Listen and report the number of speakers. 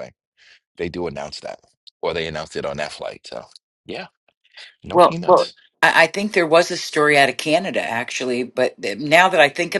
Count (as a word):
two